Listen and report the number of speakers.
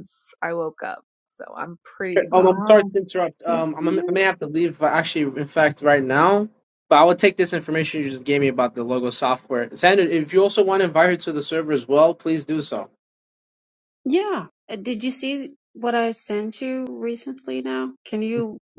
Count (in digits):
3